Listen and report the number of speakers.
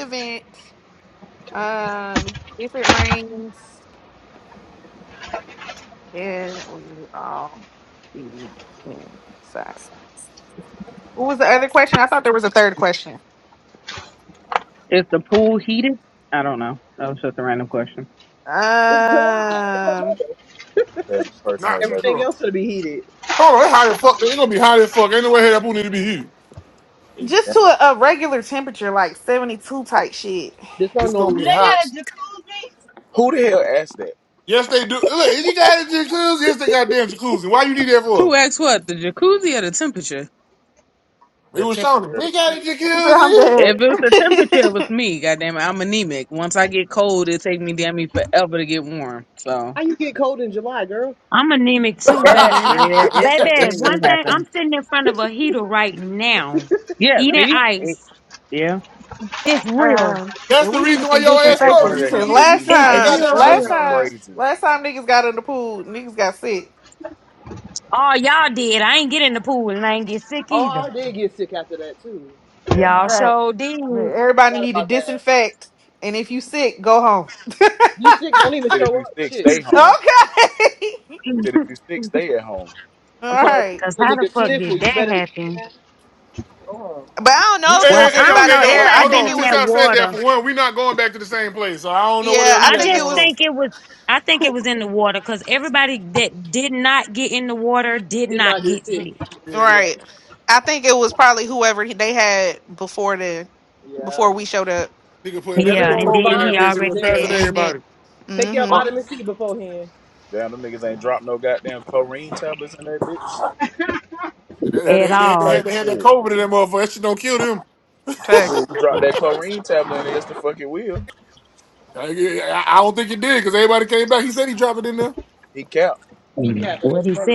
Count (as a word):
seven